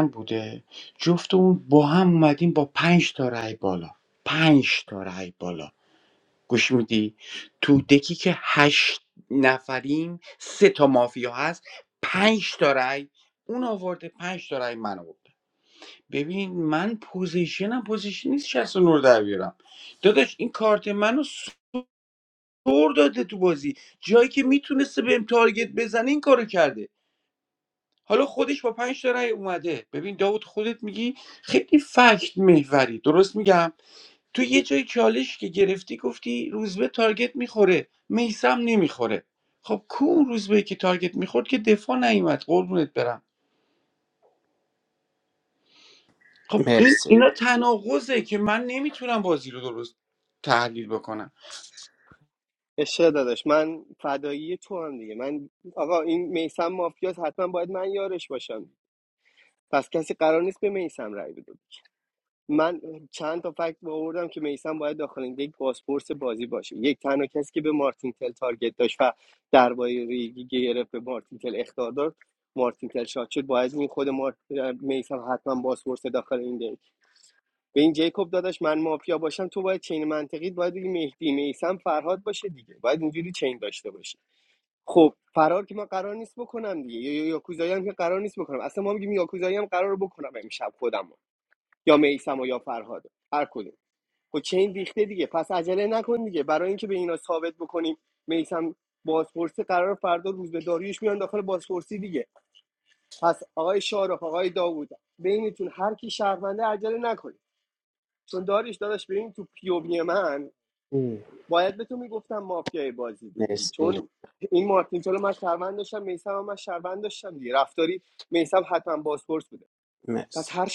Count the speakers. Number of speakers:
three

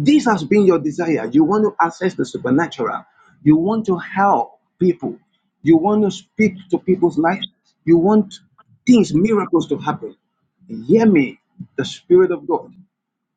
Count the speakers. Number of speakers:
one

